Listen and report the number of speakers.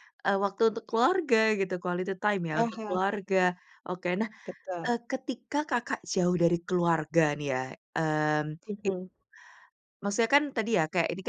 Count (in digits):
2